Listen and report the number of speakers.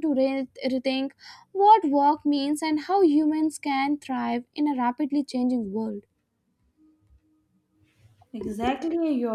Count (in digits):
2